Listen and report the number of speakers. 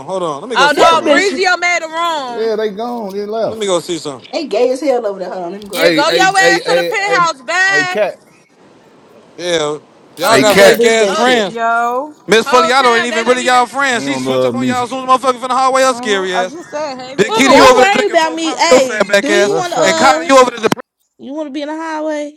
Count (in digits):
6